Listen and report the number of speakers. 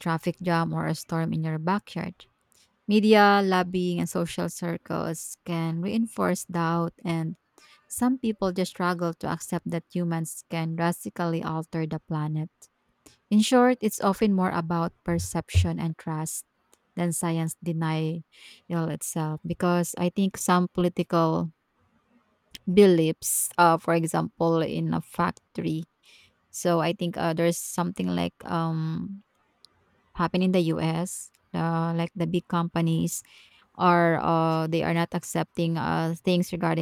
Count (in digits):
1